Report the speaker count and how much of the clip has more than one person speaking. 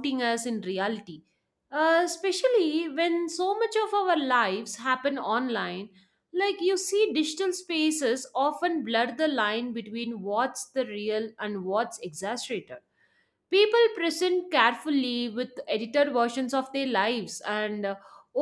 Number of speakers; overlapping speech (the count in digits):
1, no overlap